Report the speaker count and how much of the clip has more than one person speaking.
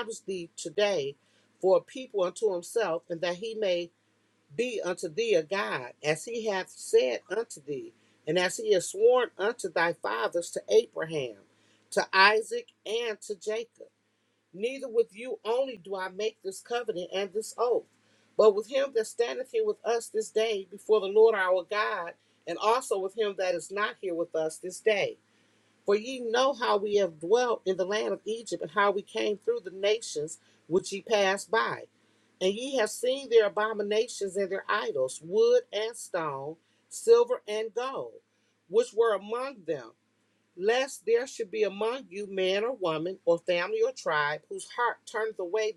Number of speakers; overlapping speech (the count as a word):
one, no overlap